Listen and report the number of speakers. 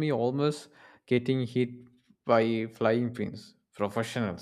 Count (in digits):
1